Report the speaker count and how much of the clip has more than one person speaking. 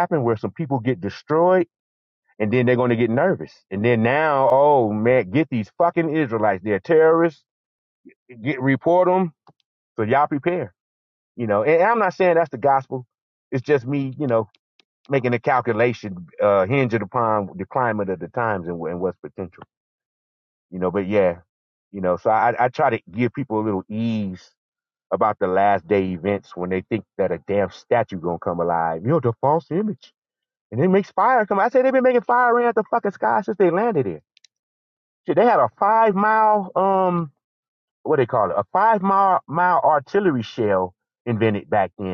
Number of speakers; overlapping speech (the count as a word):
one, no overlap